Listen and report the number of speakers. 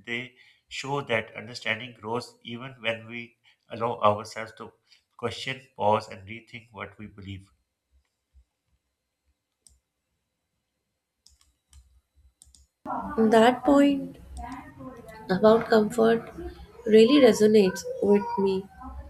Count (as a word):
two